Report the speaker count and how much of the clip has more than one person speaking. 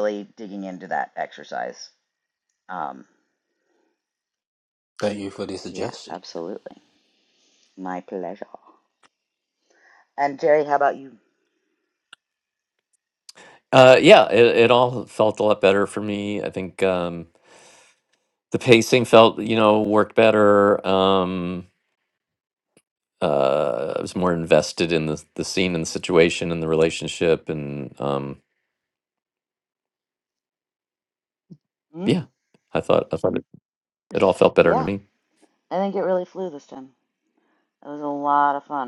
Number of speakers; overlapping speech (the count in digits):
3, about 2%